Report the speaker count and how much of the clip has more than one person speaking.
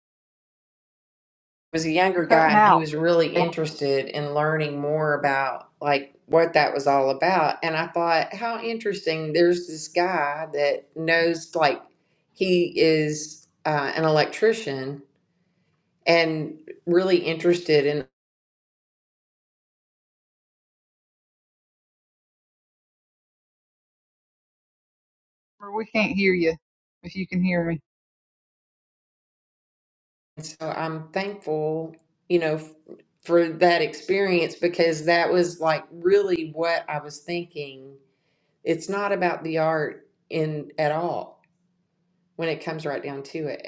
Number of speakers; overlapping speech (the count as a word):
two, about 2%